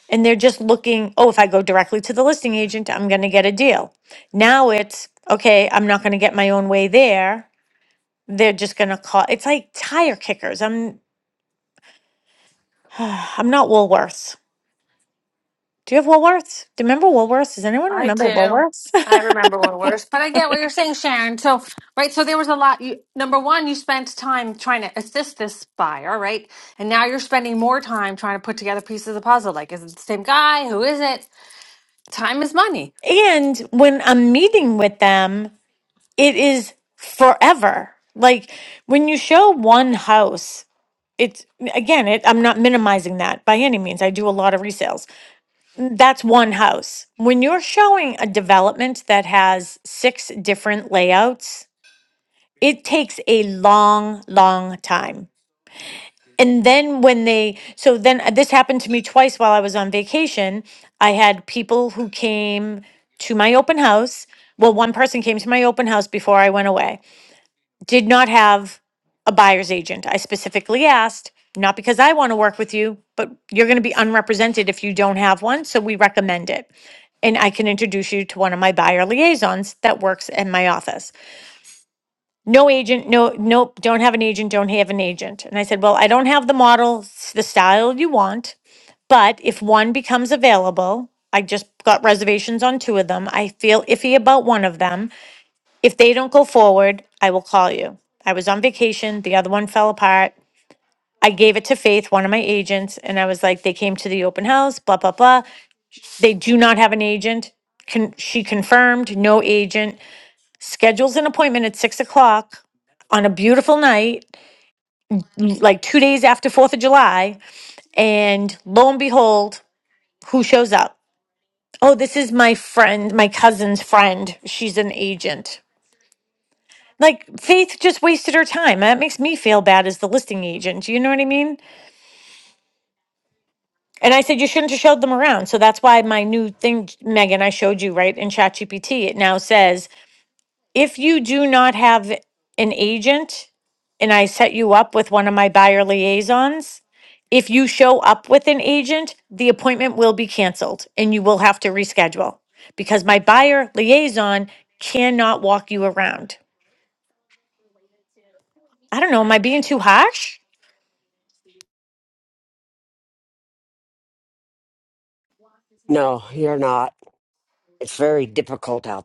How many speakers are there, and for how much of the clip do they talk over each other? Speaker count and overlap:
3, under 1%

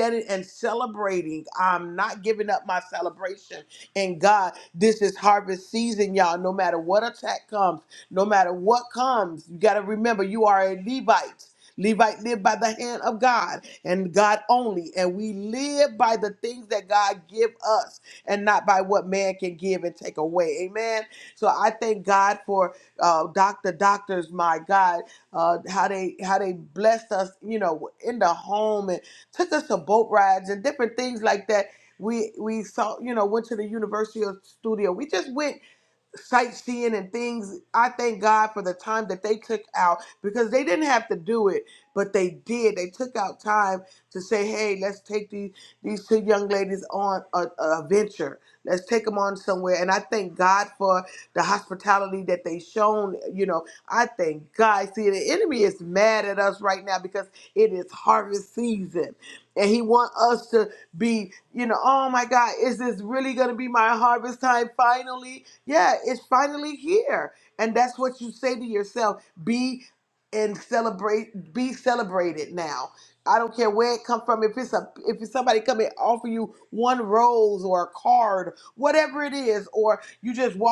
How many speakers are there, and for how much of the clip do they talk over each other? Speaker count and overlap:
1, no overlap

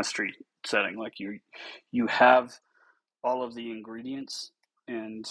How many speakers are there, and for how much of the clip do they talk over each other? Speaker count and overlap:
1, no overlap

